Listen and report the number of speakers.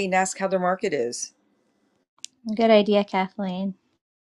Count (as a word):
two